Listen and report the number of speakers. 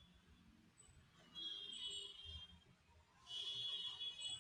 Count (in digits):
0